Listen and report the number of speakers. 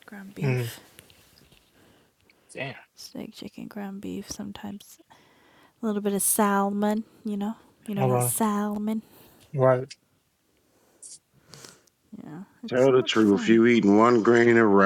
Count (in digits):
3